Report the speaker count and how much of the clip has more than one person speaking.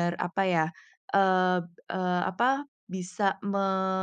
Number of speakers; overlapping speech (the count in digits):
1, no overlap